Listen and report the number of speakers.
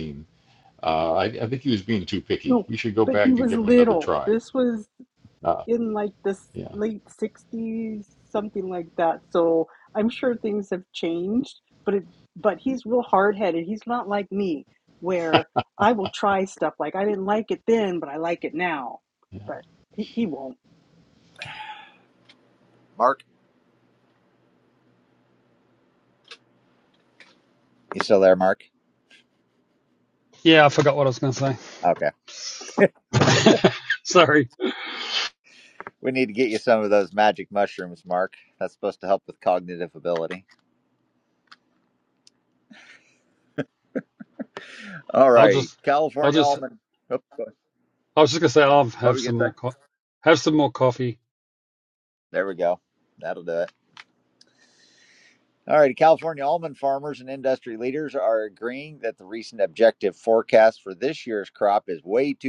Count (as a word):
four